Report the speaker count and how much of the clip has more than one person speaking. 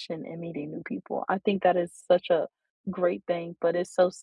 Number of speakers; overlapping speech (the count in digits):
1, no overlap